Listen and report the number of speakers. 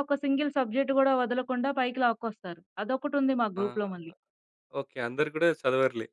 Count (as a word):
two